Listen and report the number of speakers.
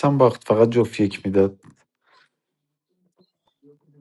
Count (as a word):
one